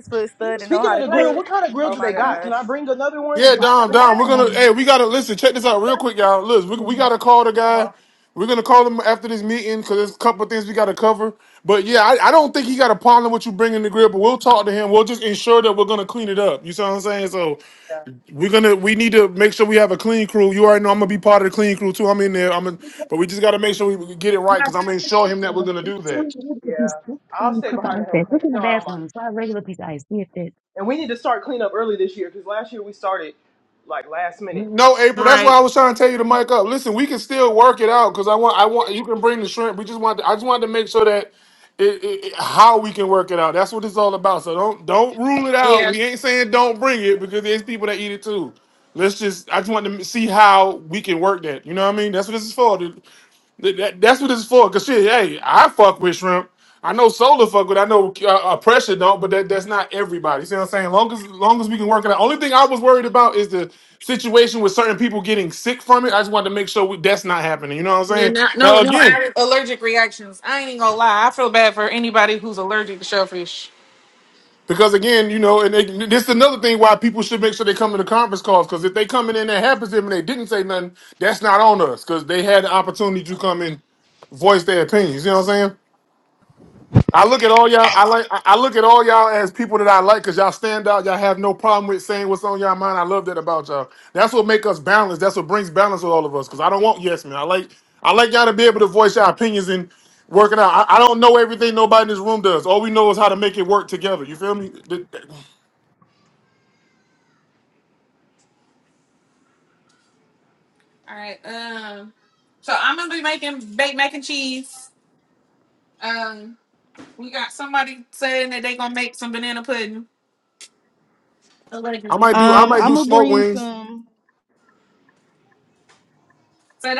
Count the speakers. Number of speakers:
5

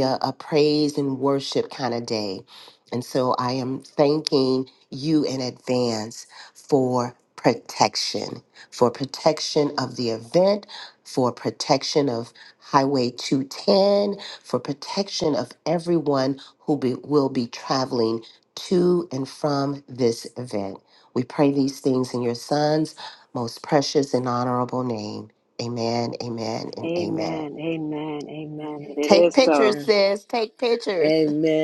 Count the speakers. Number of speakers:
3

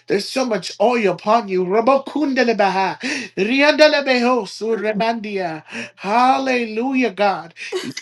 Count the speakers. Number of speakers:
1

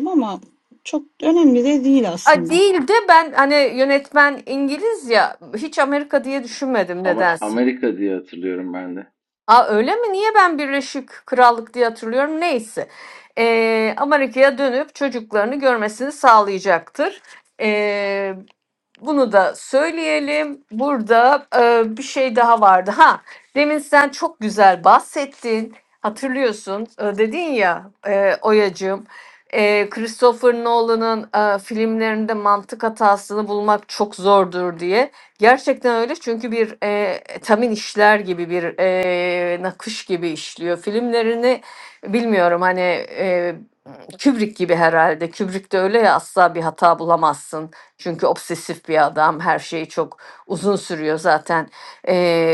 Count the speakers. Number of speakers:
3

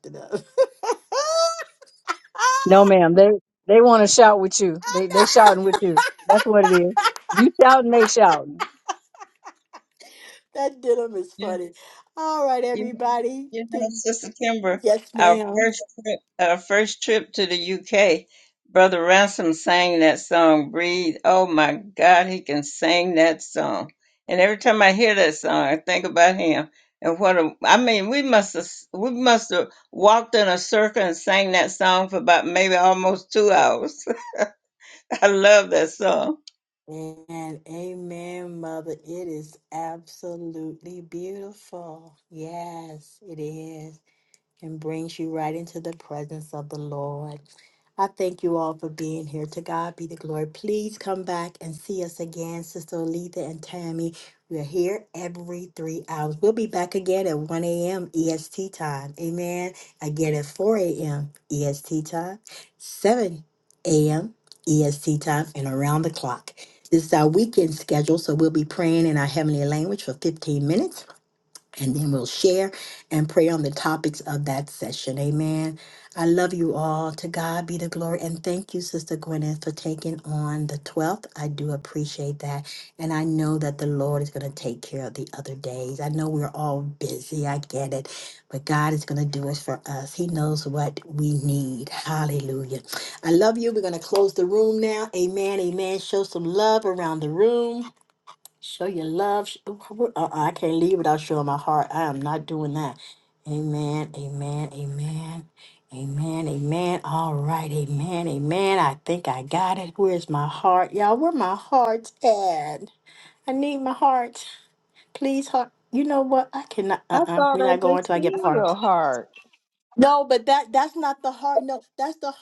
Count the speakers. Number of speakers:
4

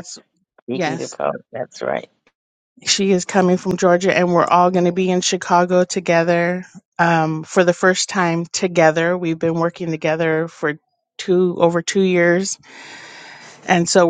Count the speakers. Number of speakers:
2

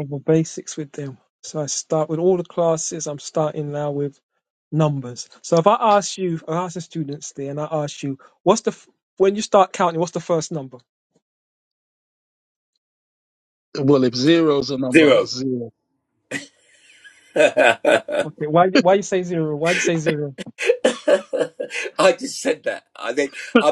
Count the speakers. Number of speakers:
3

